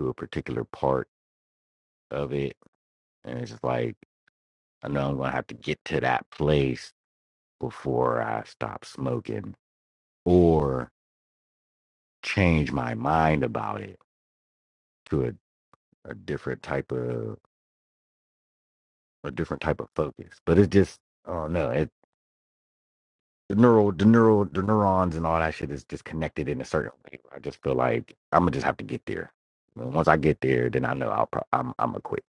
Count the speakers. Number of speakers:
1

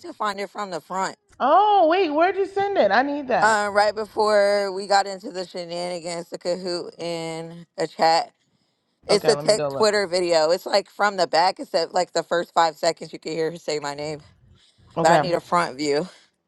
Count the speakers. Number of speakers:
2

